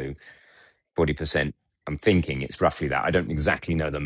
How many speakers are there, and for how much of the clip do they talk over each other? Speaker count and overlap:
1, no overlap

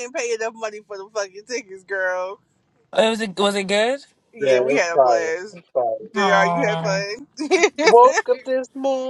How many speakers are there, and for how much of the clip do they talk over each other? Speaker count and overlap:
3, about 23%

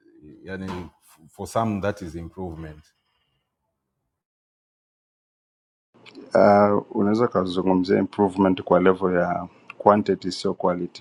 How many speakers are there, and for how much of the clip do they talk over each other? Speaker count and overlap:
2, no overlap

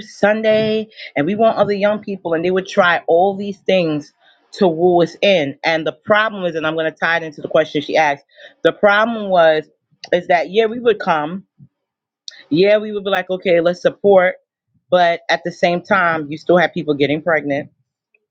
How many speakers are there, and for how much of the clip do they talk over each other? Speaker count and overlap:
1, no overlap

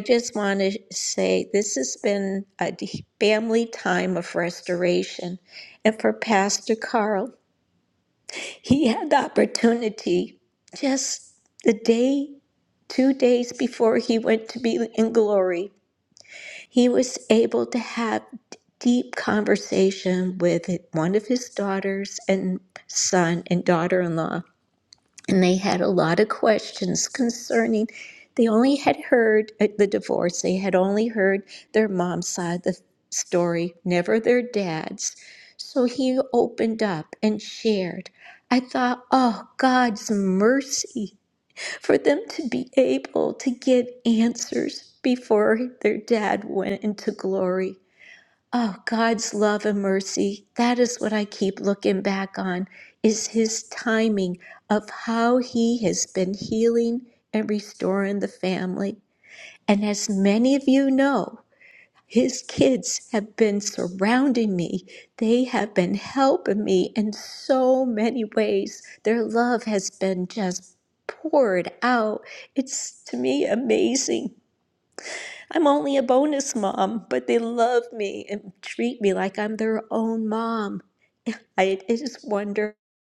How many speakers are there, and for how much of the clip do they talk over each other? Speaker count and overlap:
1, no overlap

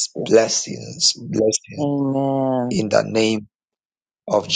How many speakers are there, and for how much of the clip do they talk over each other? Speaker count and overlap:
2, about 4%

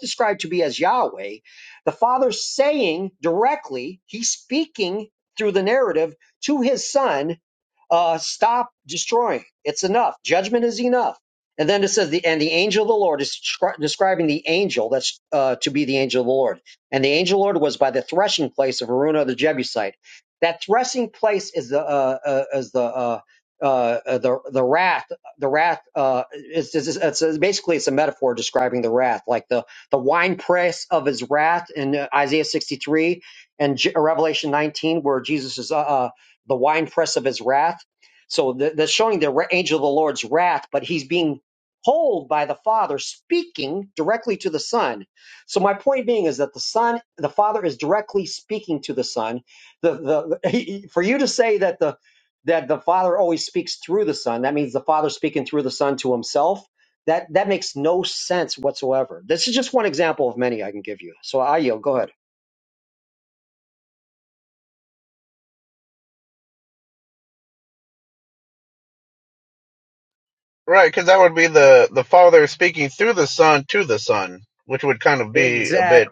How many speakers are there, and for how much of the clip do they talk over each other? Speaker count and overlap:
2, about 1%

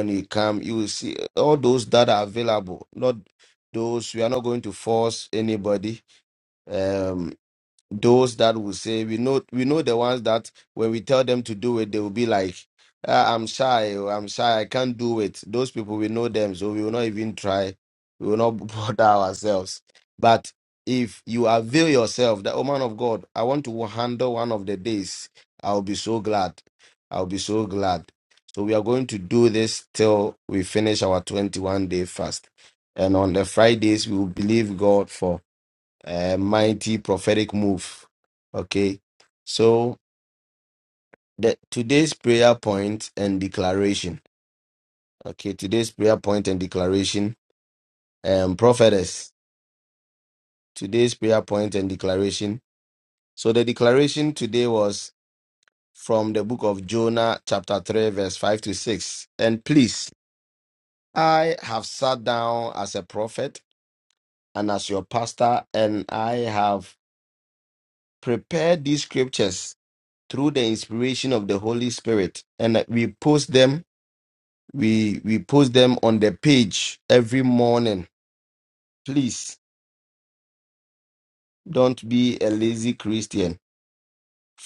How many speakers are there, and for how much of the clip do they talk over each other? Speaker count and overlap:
1, no overlap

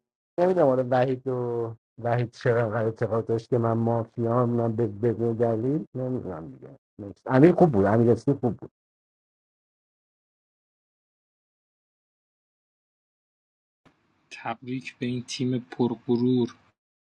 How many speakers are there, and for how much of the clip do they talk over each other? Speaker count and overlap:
2, no overlap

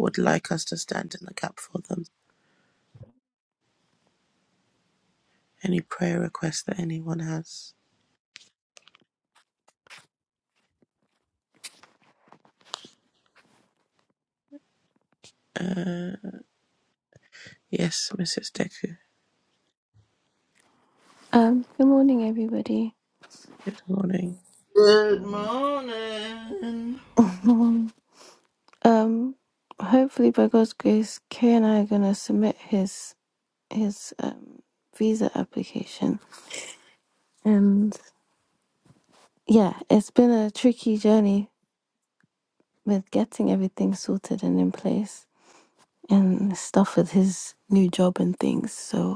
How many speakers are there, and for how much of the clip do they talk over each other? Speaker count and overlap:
3, no overlap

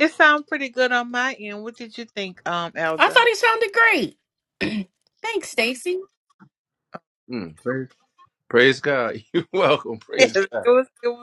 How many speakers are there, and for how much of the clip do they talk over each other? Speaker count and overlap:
3, about 7%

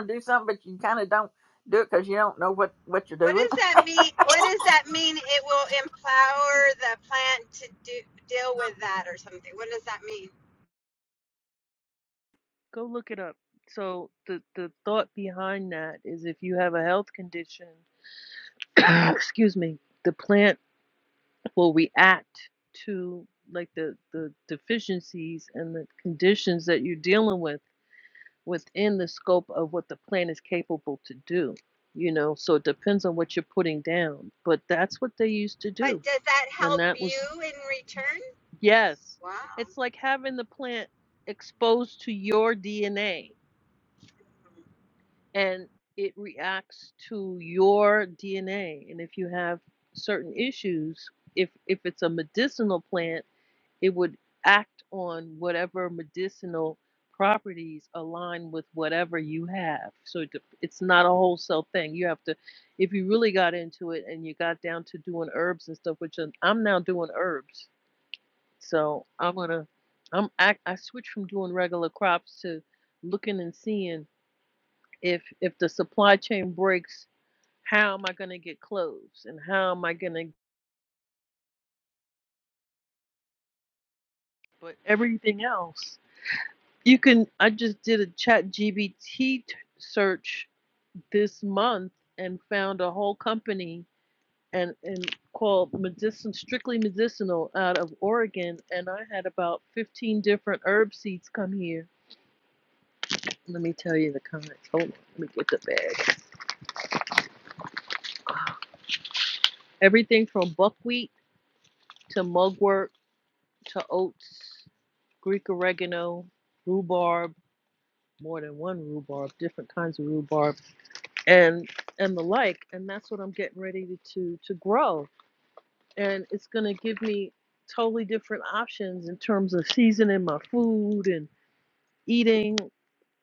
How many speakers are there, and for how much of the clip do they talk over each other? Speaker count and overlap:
3, about 1%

